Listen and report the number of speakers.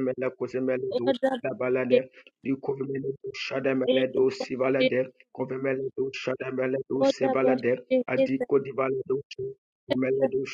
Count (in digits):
2